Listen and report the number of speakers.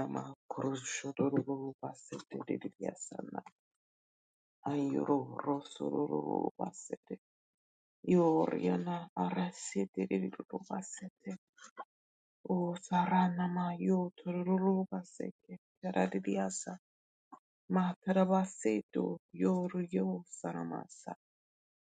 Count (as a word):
one